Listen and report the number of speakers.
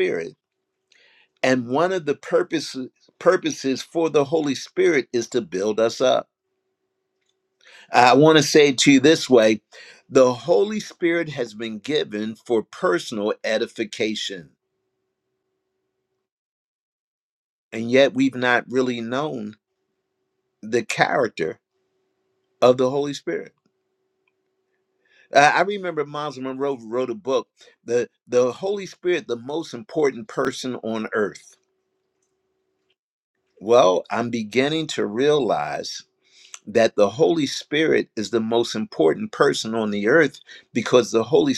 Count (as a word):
one